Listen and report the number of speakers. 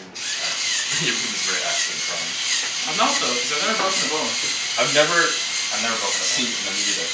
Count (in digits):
3